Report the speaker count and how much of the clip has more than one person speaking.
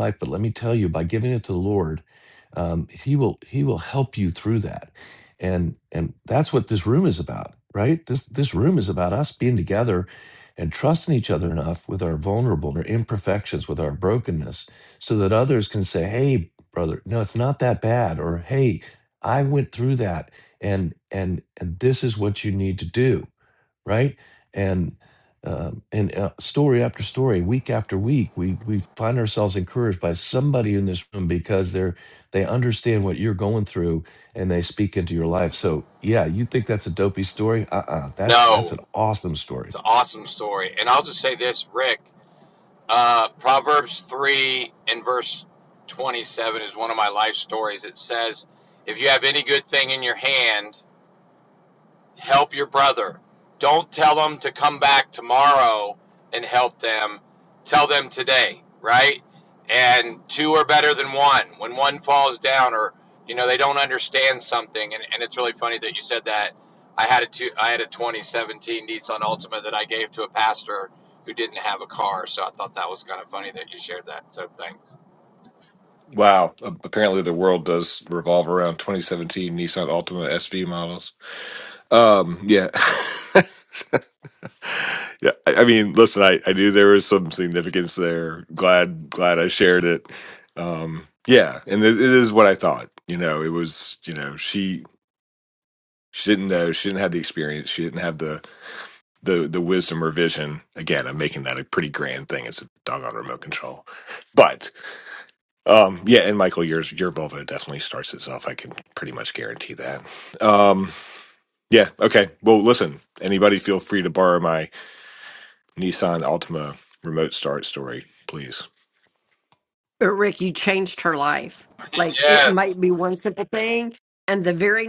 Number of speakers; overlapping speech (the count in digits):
4, about 1%